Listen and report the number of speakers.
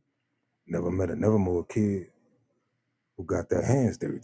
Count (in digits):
1